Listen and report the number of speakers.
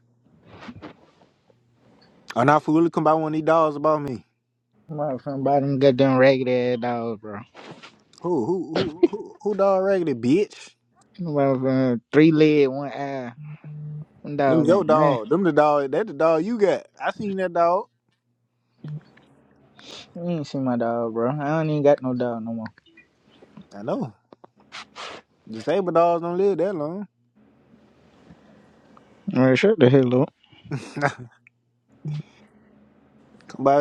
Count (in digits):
2